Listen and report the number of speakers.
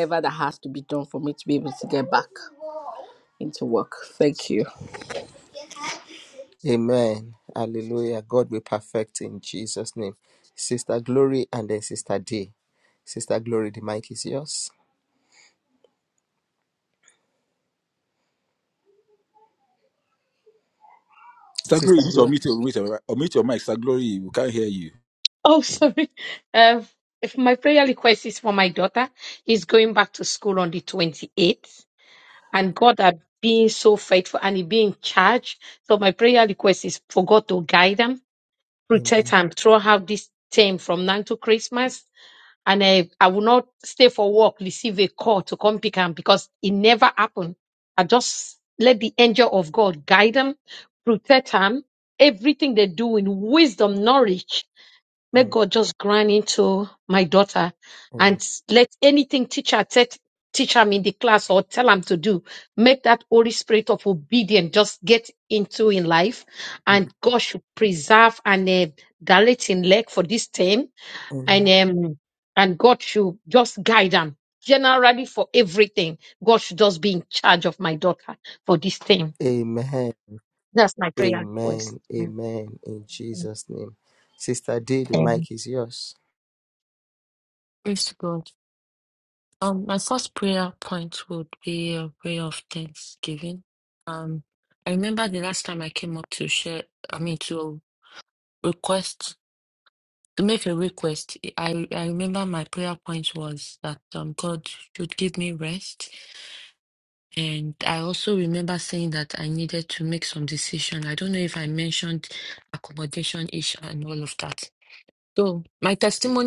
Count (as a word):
five